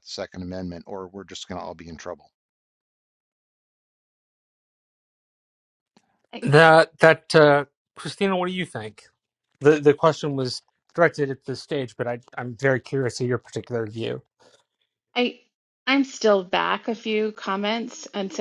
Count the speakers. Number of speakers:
3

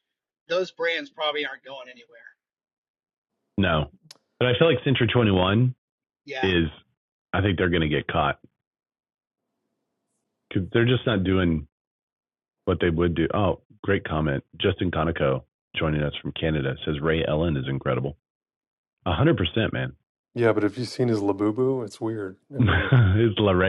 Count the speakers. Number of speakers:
3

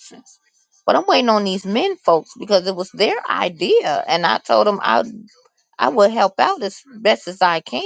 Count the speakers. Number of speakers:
1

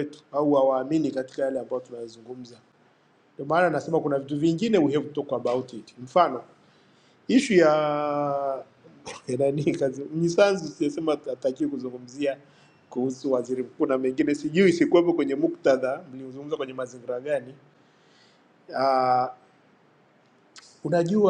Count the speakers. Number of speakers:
1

